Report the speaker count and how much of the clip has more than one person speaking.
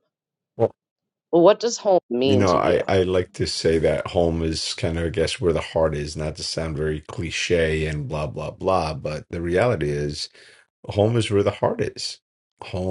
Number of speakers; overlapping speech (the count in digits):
2, about 4%